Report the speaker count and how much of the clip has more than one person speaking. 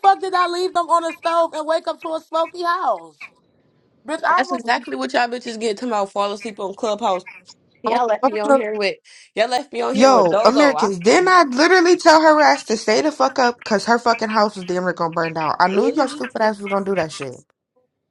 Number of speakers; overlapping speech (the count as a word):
three, about 15%